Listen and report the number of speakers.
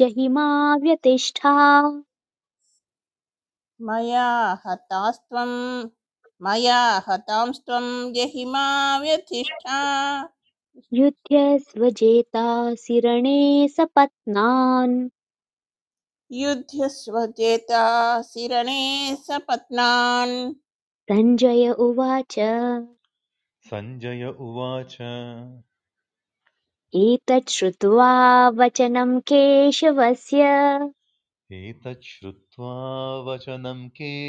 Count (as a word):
three